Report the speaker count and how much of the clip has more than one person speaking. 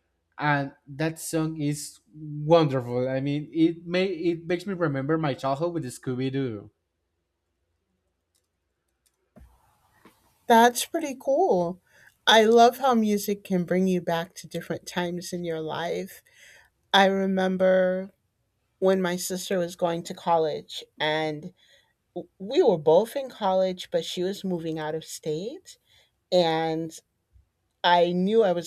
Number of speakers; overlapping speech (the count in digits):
2, no overlap